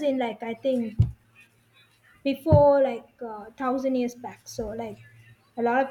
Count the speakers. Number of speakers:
one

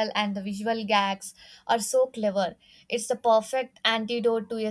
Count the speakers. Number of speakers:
one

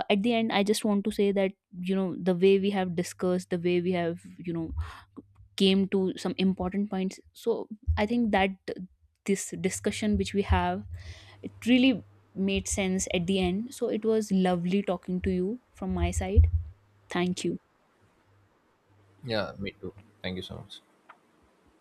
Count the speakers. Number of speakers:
two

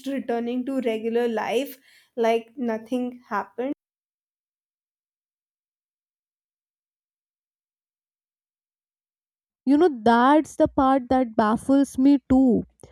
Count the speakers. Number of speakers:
two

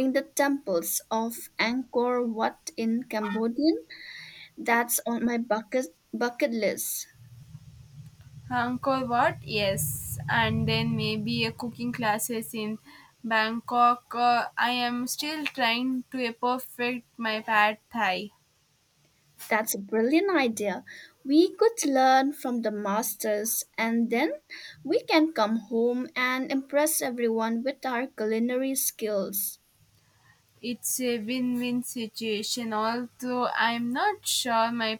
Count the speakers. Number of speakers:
two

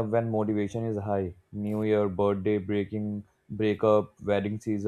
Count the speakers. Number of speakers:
one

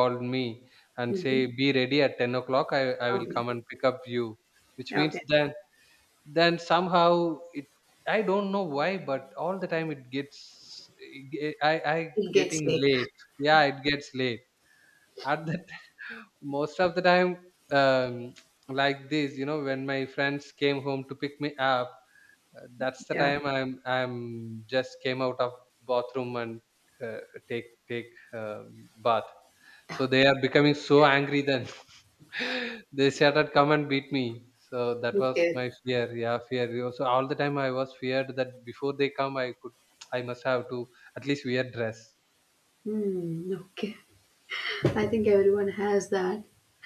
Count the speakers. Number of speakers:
two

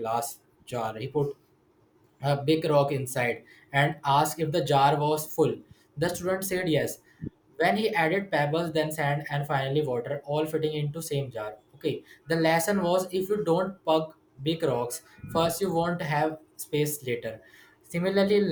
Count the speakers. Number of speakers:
one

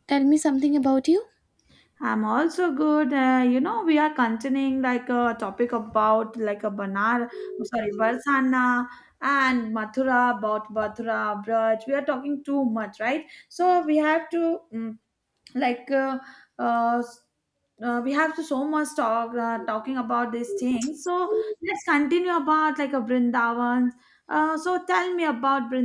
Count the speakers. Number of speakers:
two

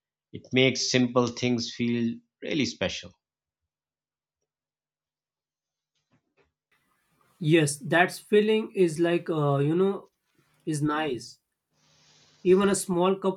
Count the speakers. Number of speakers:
two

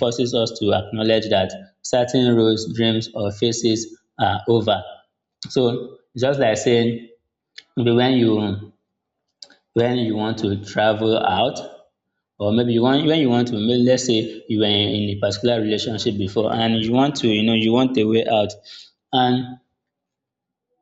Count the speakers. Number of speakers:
one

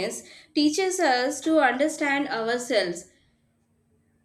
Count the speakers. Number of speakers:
one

